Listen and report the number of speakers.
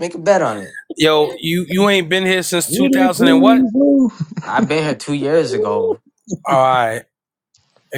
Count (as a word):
three